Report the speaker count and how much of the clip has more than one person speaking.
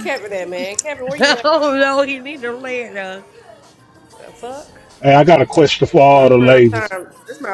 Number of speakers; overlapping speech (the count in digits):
3, about 10%